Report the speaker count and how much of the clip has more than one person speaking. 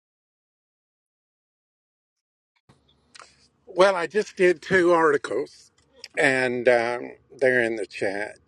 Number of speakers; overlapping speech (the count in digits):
1, no overlap